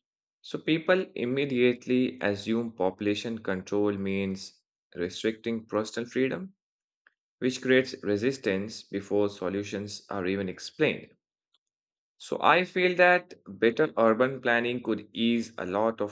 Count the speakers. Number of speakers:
1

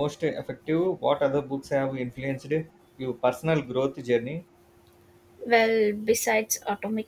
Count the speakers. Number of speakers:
2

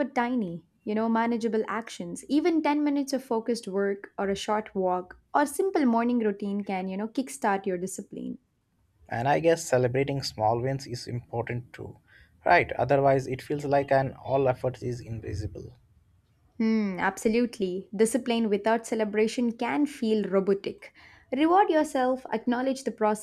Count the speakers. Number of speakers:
2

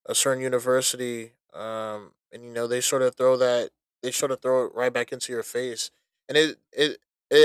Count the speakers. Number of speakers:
1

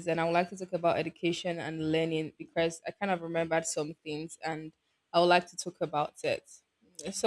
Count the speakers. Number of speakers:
1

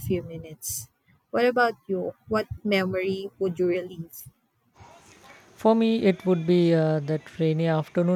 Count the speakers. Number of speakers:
2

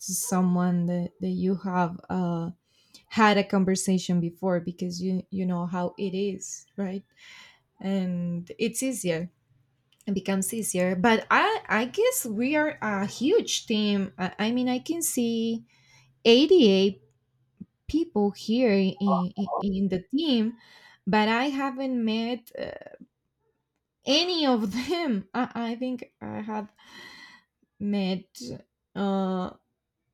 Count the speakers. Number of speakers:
1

